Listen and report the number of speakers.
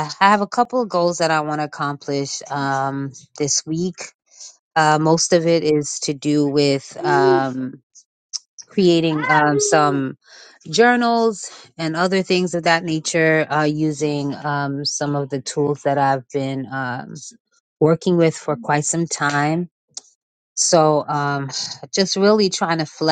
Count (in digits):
1